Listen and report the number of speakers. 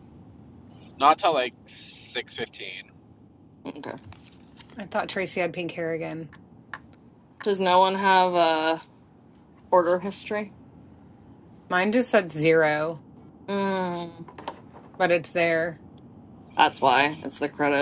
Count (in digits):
3